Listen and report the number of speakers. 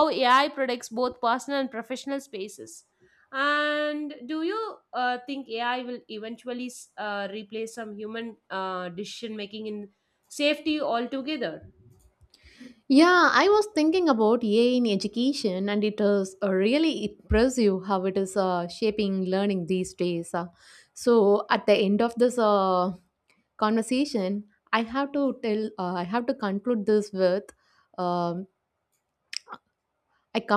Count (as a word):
two